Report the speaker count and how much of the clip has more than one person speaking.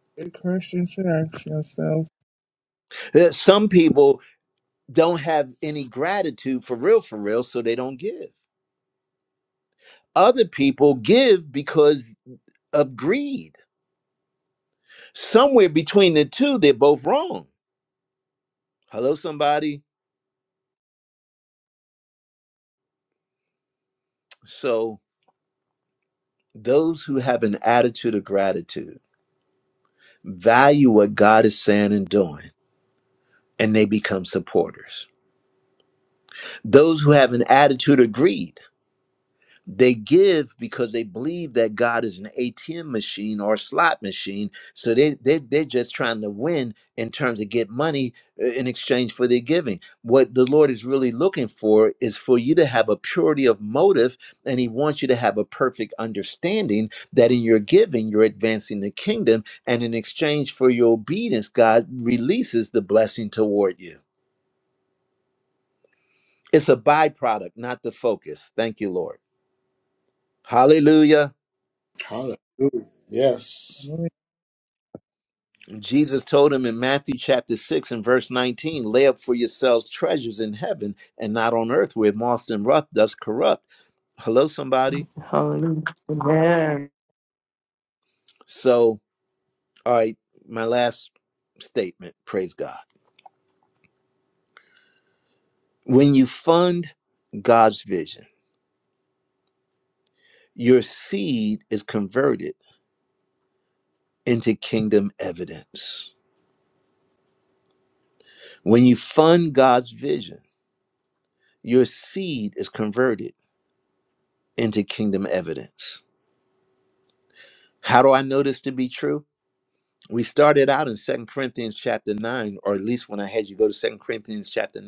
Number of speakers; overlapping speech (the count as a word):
four, under 1%